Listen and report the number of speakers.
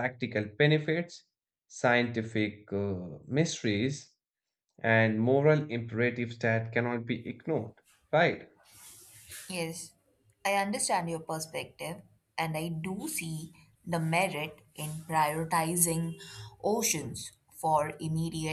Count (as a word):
two